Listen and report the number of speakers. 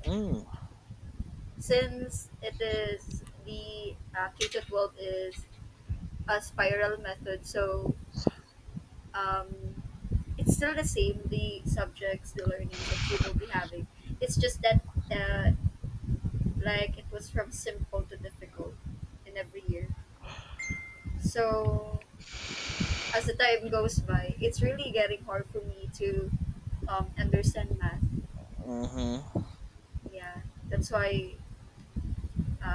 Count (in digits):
2